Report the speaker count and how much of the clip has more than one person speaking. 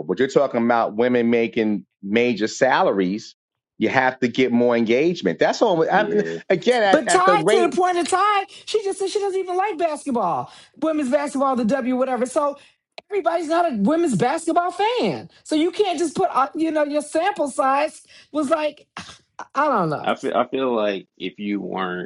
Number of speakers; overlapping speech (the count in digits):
3, about 5%